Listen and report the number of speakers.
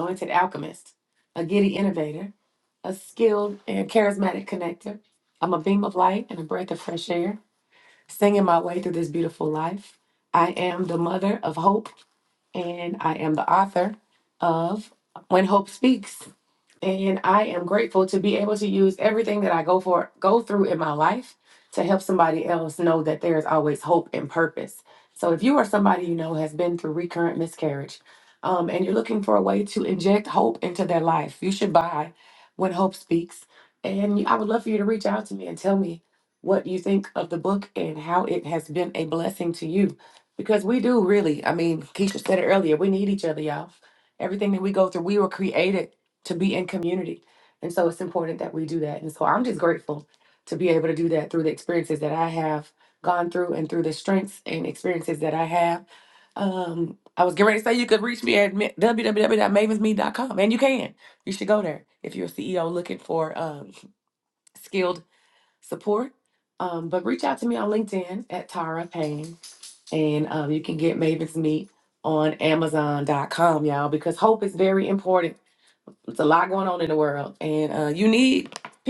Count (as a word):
one